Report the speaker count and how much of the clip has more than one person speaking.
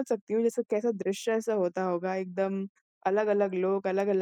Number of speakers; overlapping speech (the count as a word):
one, no overlap